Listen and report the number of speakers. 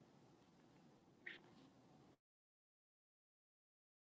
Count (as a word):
zero